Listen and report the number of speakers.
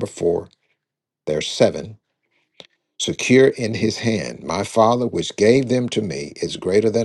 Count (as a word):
one